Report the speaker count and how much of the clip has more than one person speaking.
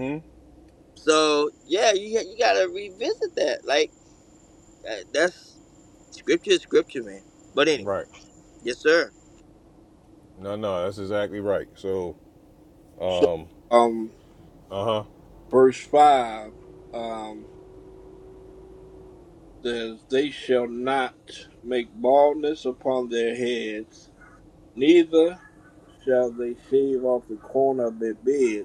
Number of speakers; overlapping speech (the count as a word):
three, about 1%